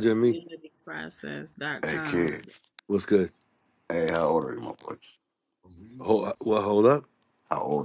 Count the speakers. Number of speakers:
three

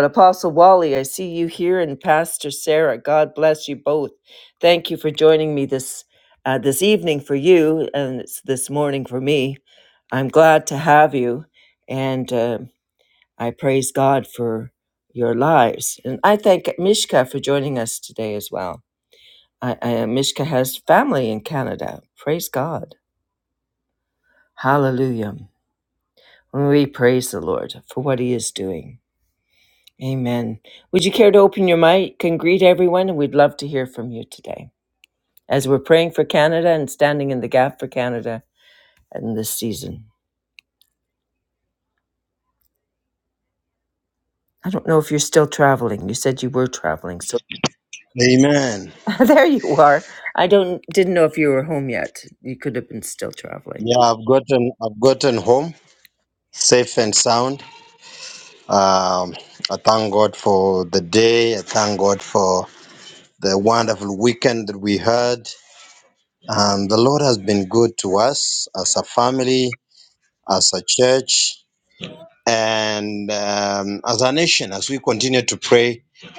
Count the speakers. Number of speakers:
two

